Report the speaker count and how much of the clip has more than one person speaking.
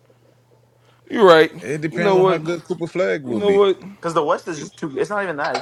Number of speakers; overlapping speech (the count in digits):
3, about 15%